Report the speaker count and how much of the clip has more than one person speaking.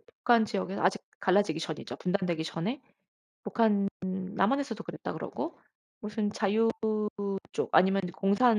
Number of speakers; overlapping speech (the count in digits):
1, no overlap